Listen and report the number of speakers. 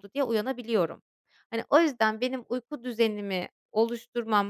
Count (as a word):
one